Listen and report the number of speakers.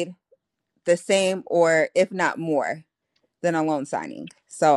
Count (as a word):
one